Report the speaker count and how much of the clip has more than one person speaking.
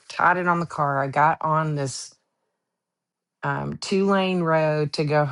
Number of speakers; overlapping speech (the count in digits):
1, no overlap